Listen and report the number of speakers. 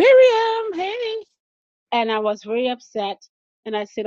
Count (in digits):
2